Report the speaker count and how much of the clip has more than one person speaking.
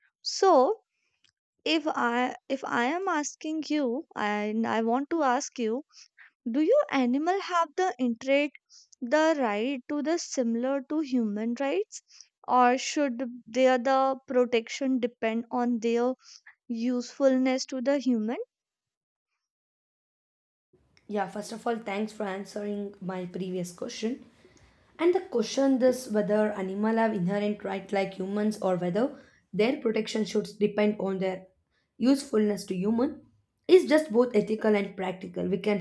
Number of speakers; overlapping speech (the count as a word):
two, no overlap